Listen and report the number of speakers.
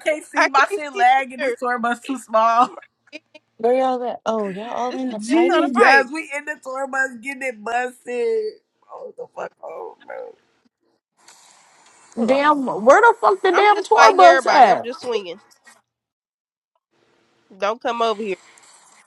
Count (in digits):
4